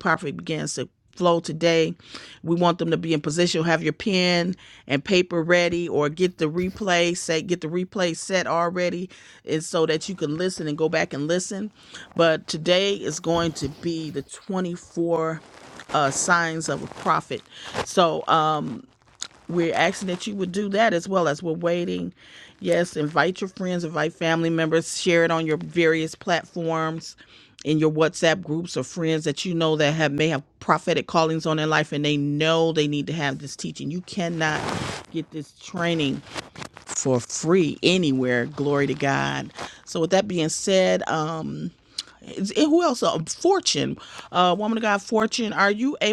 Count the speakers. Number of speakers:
1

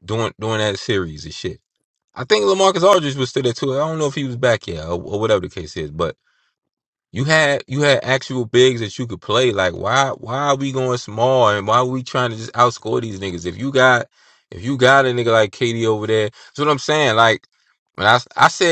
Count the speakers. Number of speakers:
1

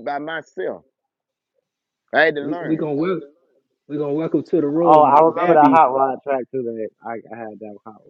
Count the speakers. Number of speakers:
3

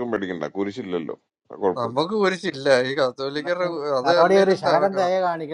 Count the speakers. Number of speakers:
3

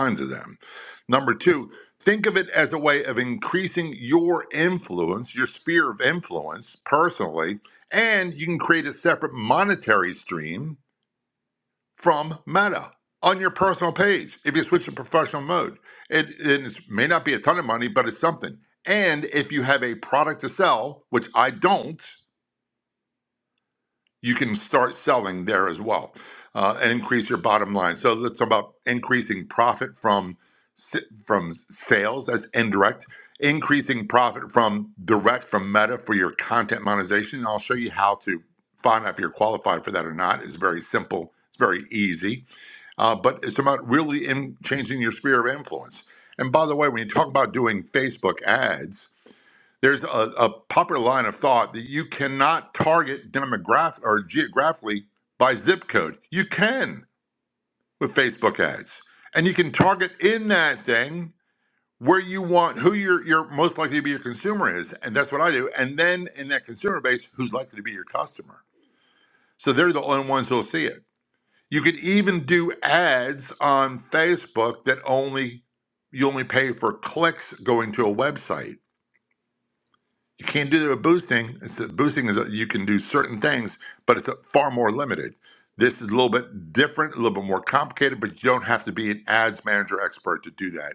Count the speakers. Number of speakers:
1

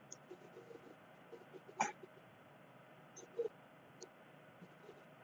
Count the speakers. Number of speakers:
0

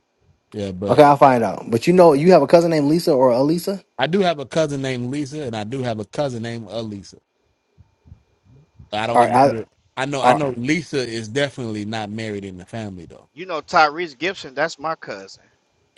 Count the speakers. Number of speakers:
3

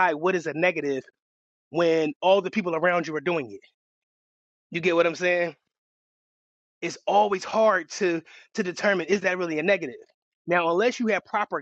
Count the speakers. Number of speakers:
1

